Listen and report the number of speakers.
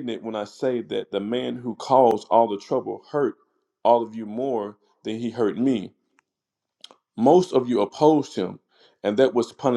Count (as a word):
one